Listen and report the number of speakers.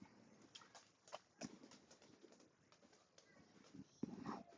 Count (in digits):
0